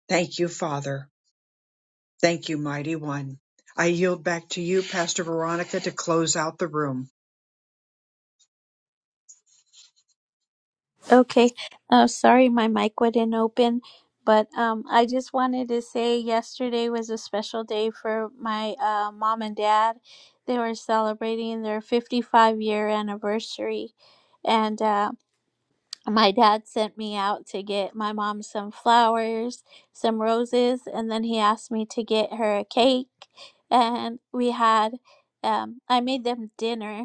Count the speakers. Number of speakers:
two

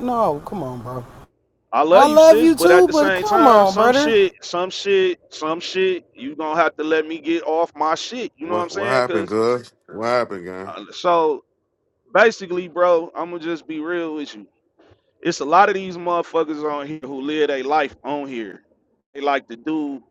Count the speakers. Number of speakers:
three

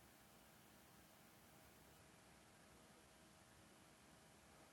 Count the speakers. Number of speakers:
zero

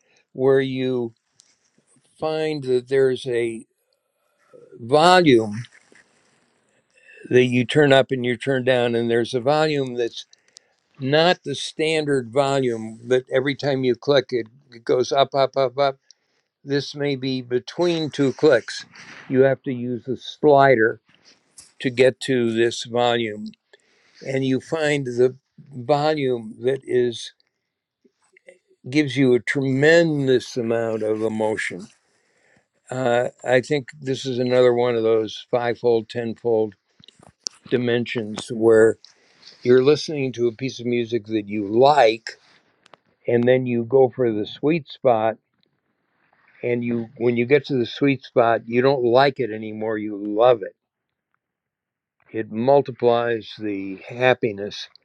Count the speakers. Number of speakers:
one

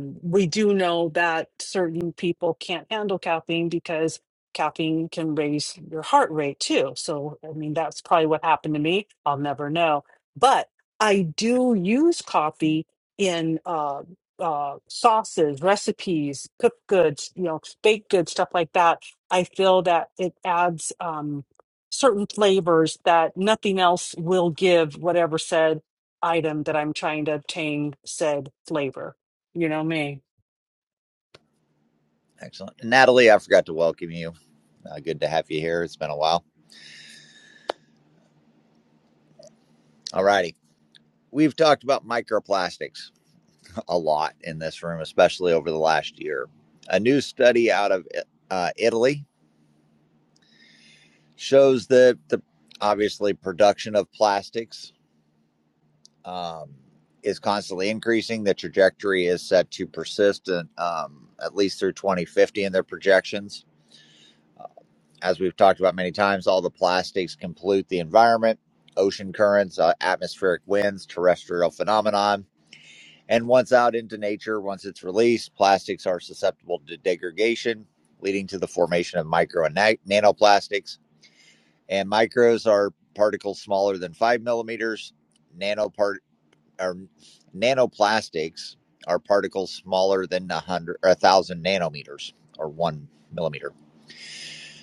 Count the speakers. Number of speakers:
two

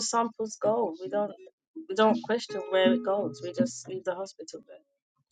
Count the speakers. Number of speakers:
one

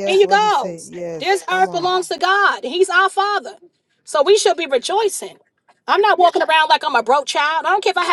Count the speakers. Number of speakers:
two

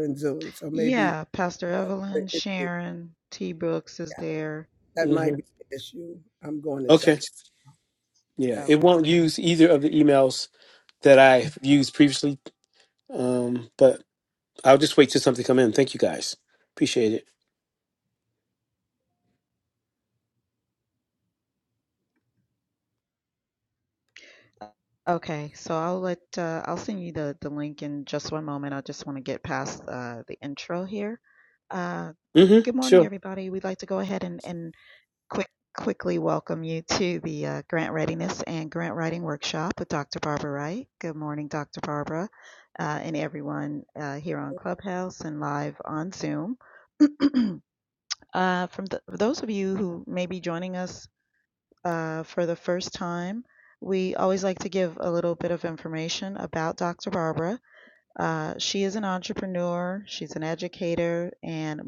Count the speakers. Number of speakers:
three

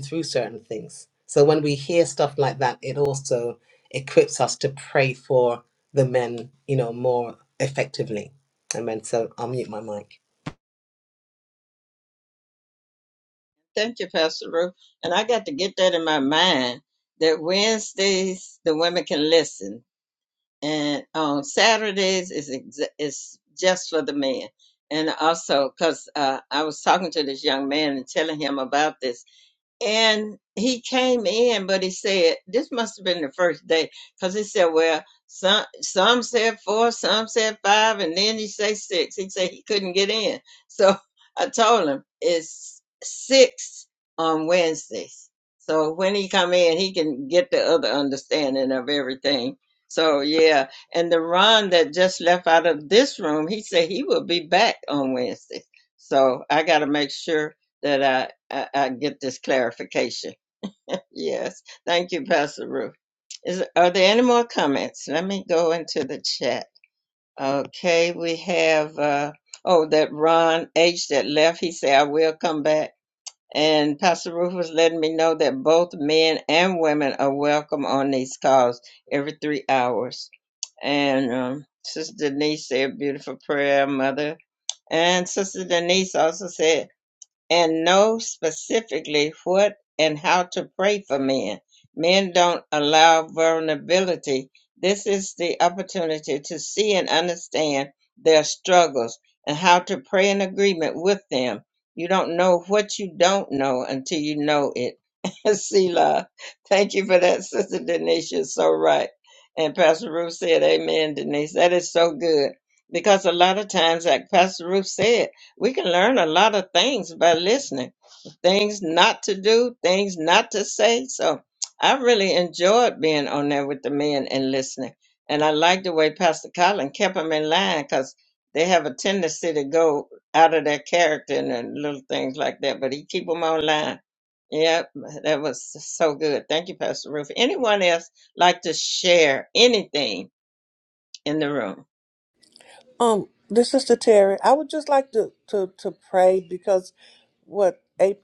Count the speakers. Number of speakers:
three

